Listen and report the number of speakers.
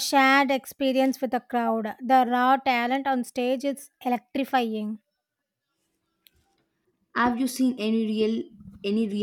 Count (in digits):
2